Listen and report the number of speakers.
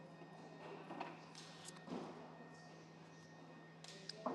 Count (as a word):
zero